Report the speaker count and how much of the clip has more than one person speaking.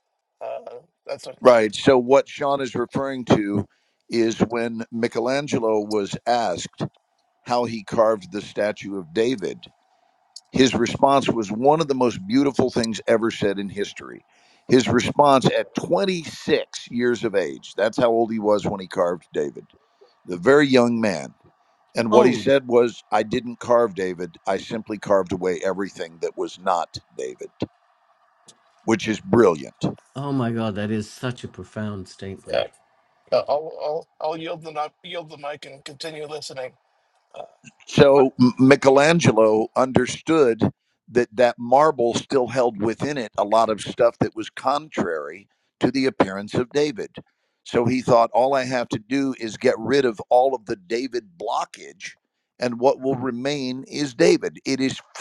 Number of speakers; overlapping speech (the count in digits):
3, about 1%